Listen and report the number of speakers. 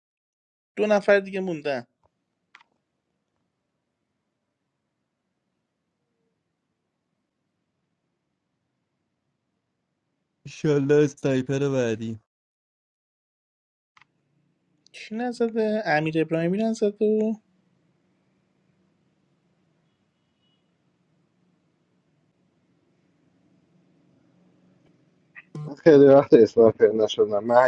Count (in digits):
3